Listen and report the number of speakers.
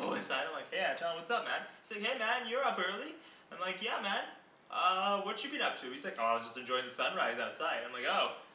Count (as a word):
one